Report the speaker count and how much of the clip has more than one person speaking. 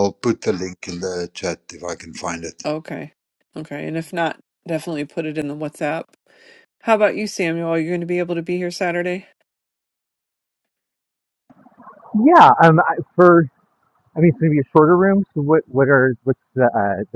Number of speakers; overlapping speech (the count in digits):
3, no overlap